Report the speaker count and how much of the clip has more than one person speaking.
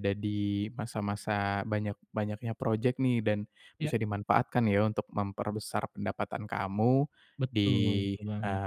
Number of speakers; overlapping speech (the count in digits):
2, about 5%